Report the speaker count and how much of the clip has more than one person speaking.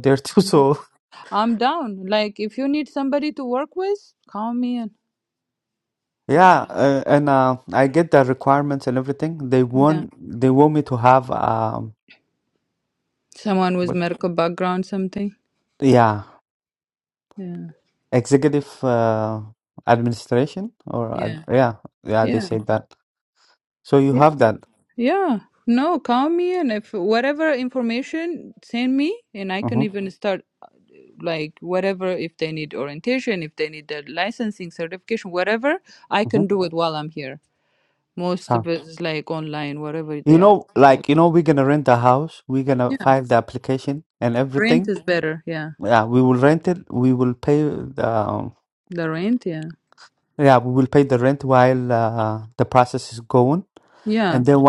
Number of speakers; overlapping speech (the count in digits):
2, about 6%